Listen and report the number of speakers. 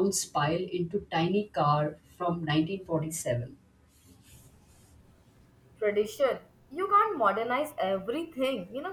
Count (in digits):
2